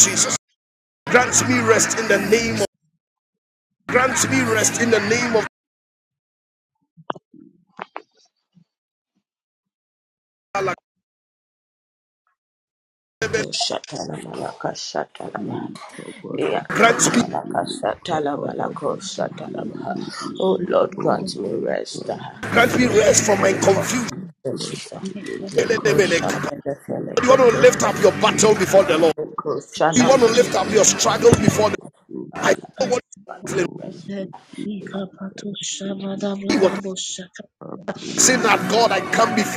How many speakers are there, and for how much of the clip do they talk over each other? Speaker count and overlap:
three, about 37%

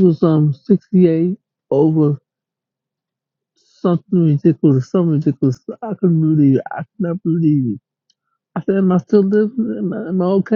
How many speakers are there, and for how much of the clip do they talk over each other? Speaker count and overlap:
one, no overlap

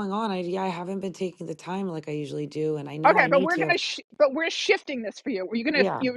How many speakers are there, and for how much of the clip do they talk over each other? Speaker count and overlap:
two, about 16%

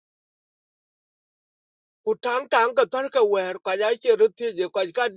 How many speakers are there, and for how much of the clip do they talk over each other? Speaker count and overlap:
one, no overlap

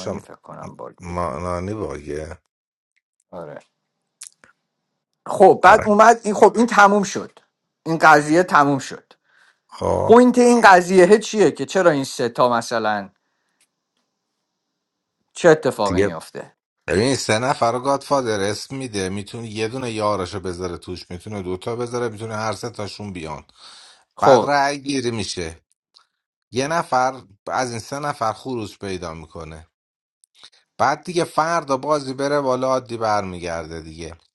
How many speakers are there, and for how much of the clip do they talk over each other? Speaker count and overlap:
two, about 3%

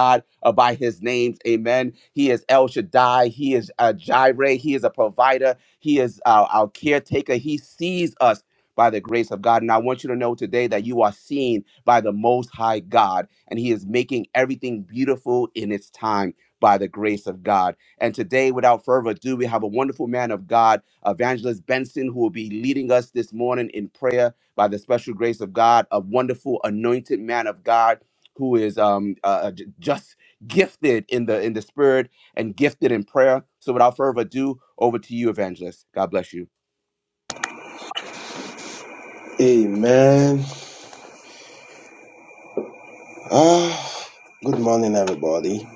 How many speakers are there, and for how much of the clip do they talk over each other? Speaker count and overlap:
two, no overlap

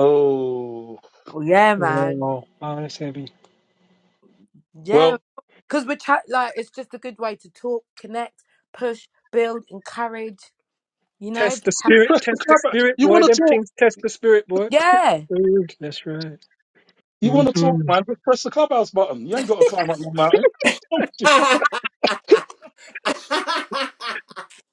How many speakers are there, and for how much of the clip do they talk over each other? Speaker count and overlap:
four, about 13%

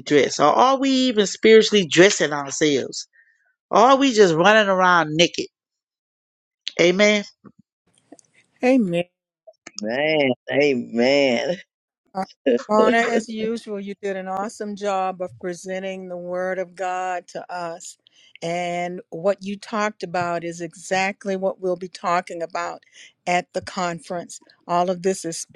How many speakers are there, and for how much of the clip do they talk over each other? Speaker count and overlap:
three, no overlap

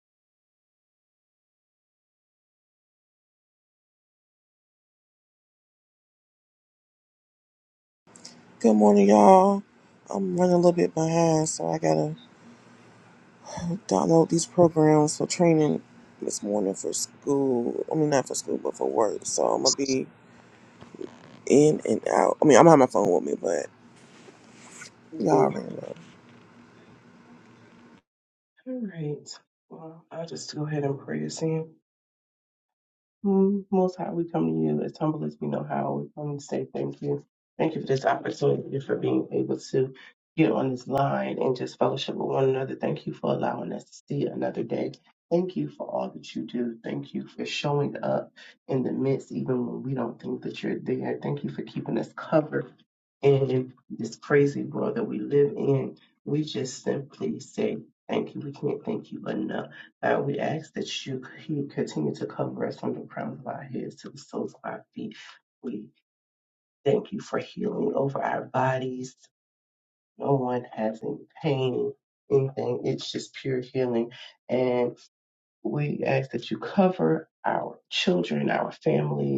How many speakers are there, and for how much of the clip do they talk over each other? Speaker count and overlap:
two, under 1%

